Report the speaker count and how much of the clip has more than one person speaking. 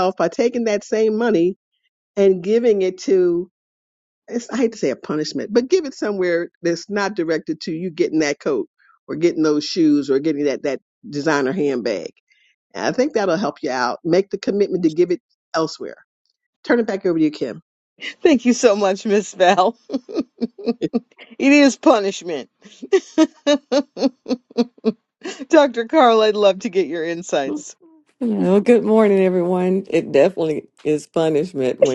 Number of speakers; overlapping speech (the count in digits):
3, no overlap